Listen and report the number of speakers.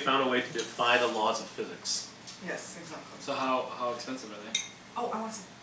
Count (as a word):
three